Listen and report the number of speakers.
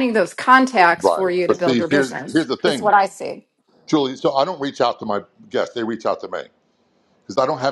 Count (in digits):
2